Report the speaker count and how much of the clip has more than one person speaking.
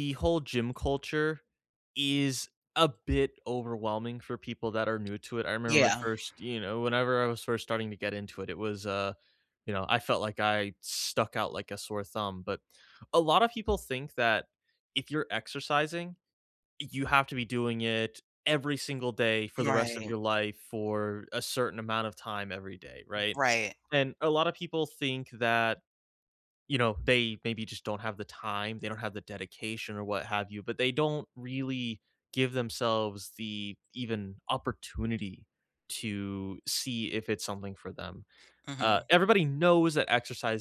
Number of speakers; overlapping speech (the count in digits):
2, about 3%